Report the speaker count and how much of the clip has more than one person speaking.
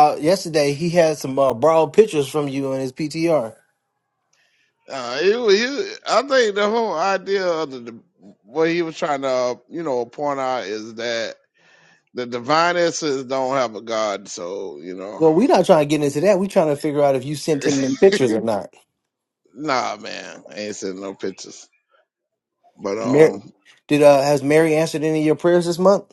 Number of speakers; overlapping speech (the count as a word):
two, about 1%